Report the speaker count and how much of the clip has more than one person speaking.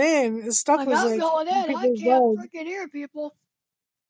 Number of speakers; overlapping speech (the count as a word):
two, about 30%